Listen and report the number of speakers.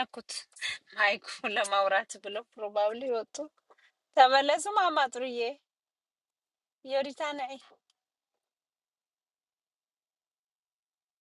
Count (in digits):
1